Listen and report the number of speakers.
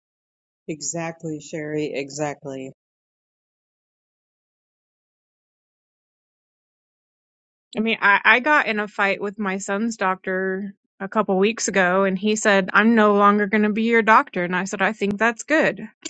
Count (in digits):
2